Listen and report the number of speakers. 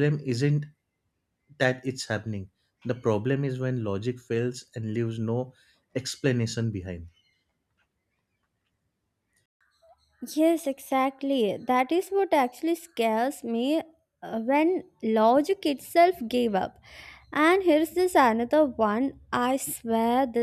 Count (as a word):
two